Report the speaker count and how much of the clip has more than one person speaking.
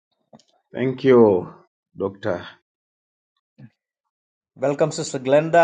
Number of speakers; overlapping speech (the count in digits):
2, no overlap